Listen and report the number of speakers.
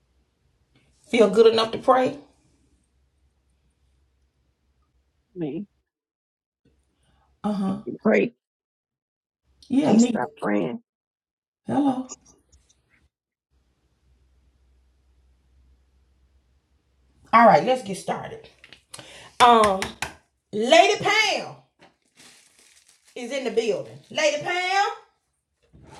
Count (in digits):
2